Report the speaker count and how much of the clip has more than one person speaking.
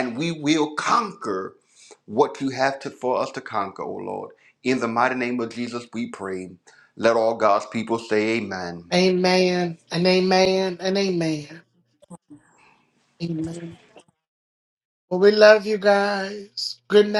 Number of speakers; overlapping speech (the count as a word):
two, no overlap